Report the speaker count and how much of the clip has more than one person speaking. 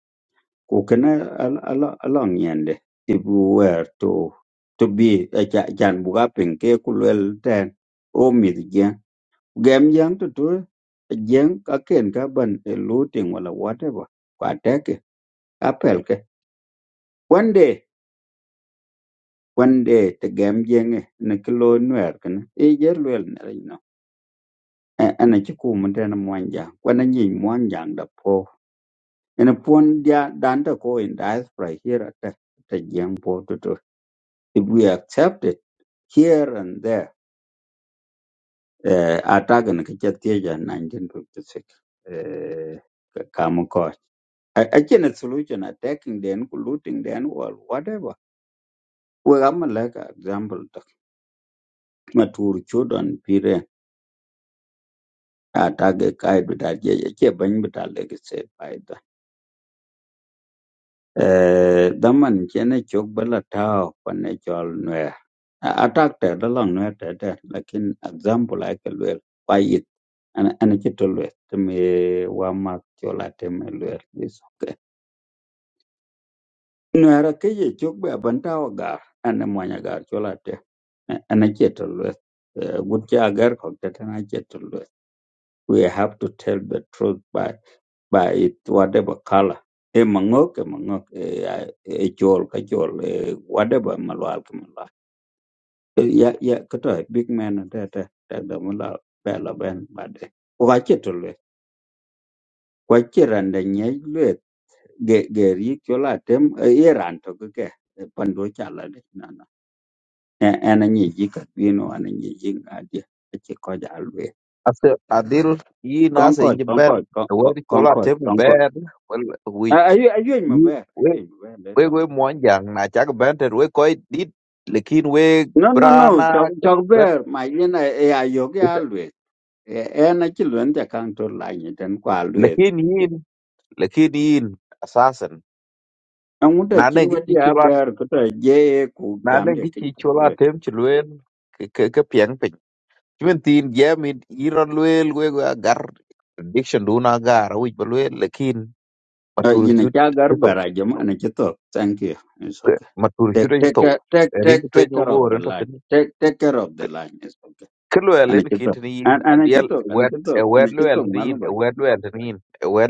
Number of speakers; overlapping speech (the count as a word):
two, about 7%